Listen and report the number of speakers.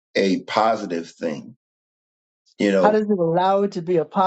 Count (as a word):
two